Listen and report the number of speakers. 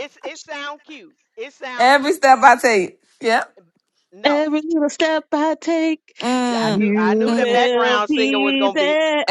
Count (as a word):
three